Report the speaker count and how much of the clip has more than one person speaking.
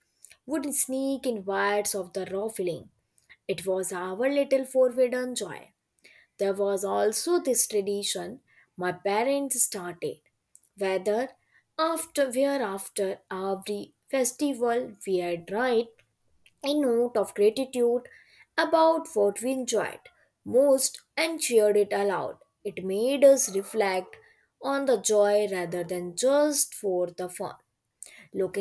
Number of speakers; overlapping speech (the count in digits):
1, no overlap